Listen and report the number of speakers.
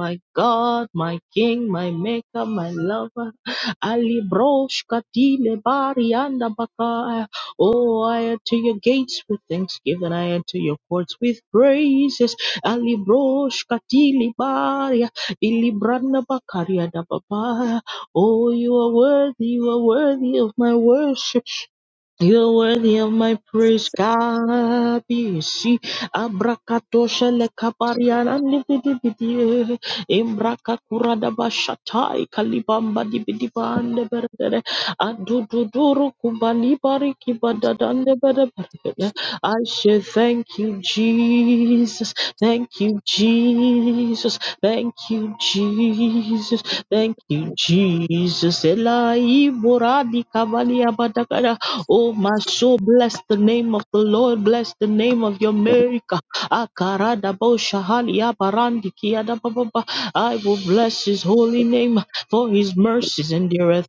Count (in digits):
1